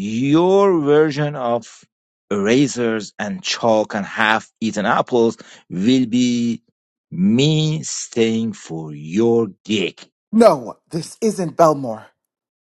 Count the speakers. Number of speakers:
2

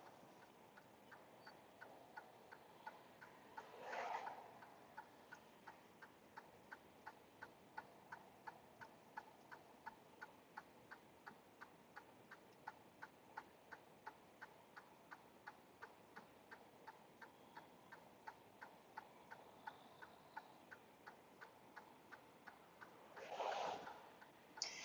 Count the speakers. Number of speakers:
0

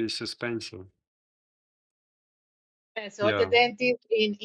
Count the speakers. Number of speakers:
2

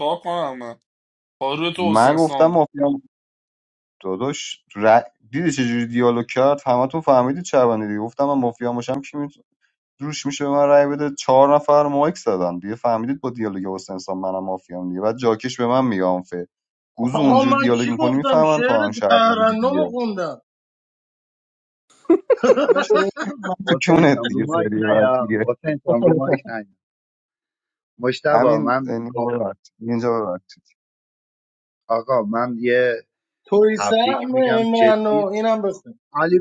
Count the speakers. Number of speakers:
4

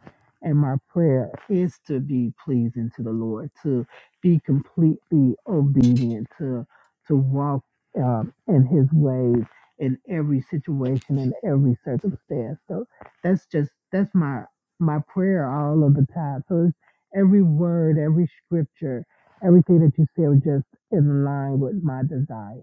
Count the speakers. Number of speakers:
1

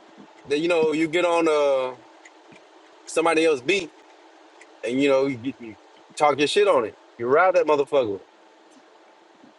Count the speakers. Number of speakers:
1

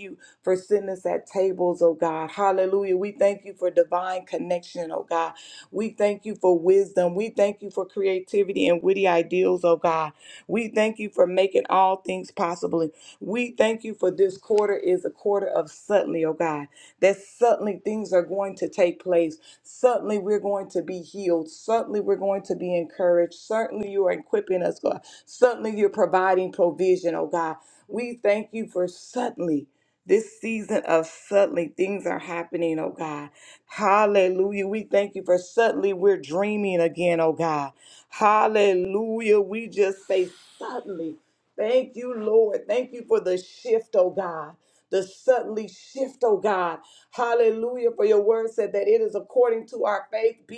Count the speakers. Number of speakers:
1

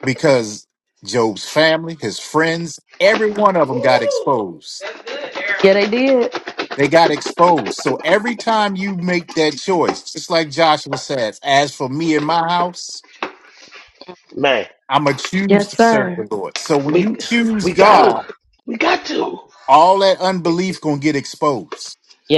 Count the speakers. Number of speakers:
3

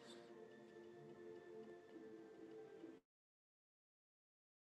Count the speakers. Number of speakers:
0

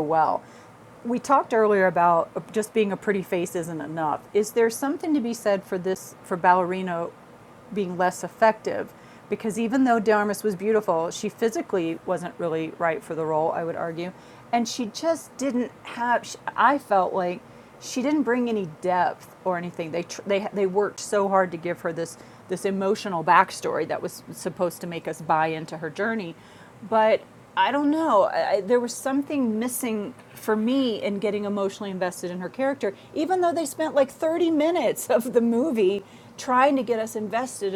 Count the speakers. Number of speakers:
1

